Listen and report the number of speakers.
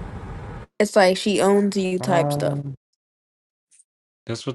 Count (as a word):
two